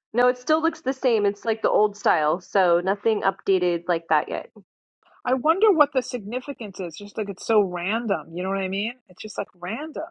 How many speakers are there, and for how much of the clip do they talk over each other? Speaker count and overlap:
2, no overlap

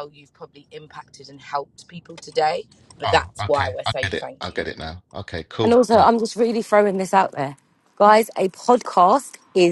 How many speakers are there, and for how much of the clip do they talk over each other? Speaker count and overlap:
3, about 19%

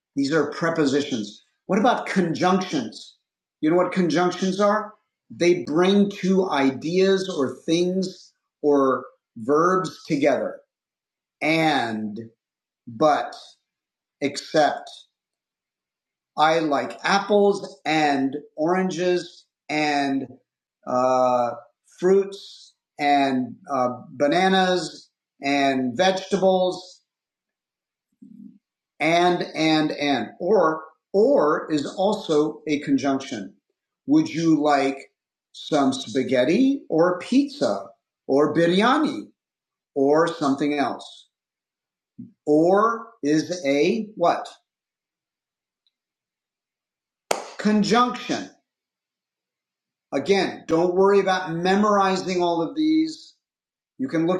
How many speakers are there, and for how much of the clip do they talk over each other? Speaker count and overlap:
1, no overlap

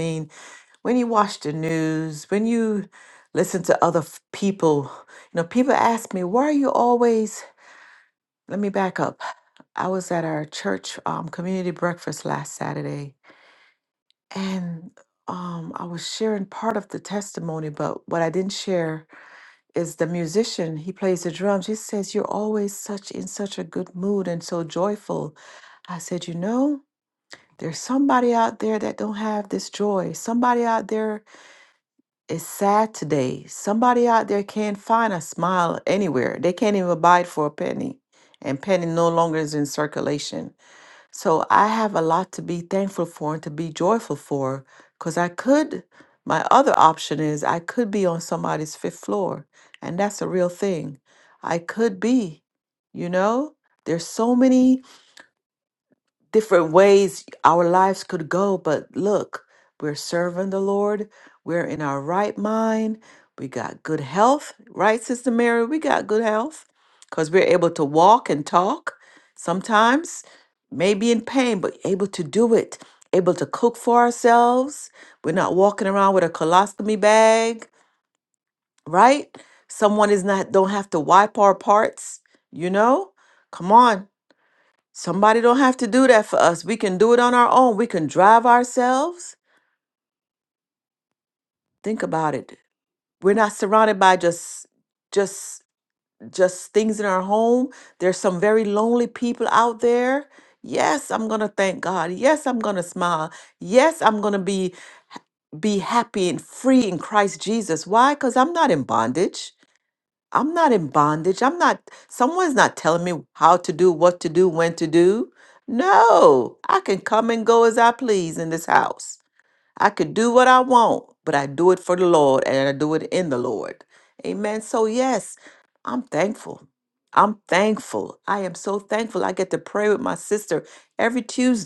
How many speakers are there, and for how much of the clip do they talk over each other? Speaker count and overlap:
1, no overlap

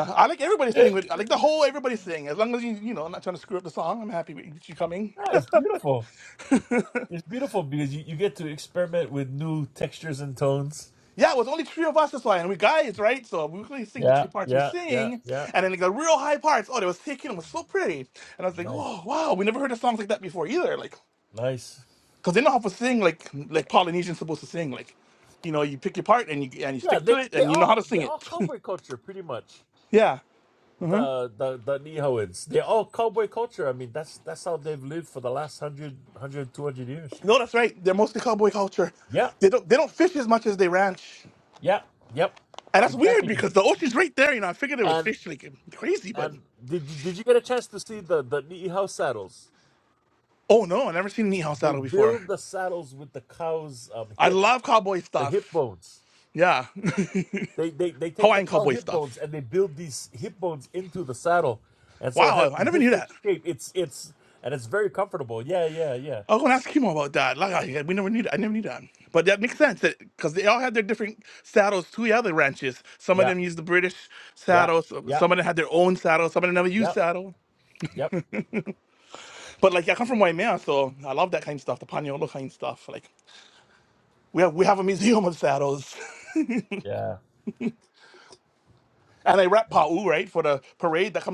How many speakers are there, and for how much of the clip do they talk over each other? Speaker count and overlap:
2, about 8%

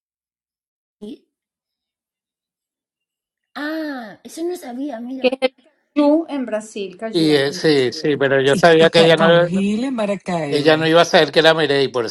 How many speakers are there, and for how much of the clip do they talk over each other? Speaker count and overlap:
4, about 20%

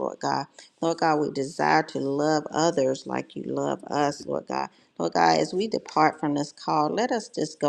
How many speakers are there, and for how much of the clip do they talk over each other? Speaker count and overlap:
1, no overlap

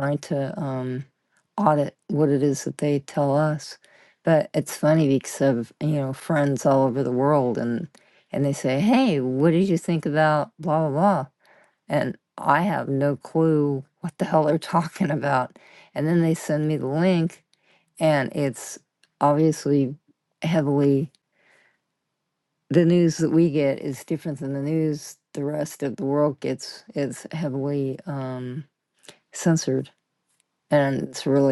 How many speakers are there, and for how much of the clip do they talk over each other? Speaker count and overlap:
1, no overlap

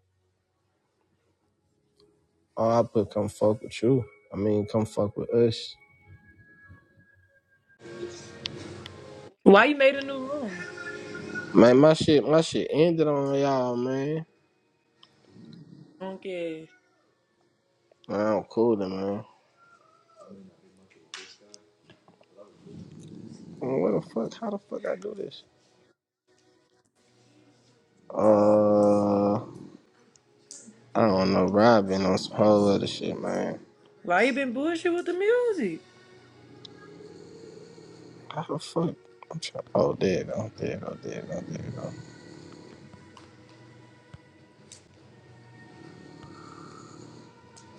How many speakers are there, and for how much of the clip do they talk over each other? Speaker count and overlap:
2, no overlap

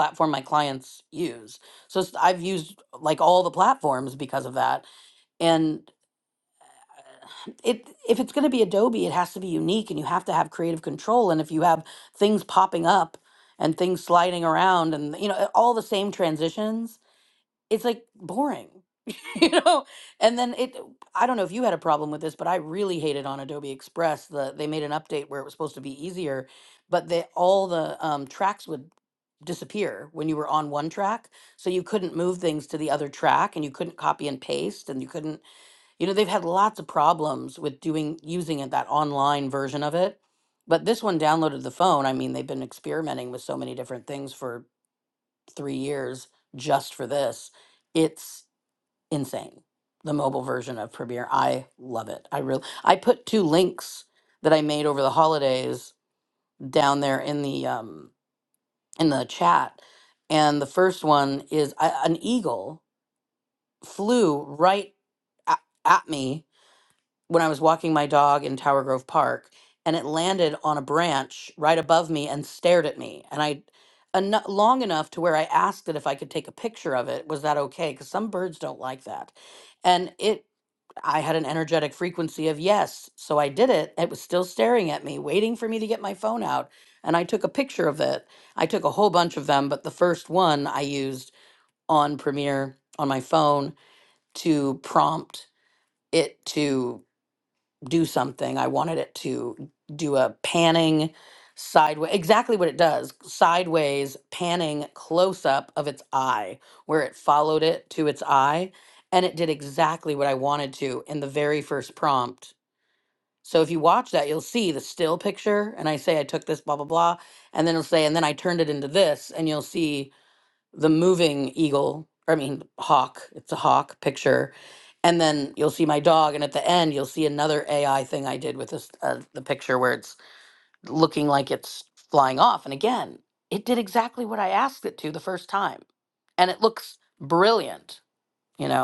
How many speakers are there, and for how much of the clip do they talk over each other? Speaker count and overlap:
1, no overlap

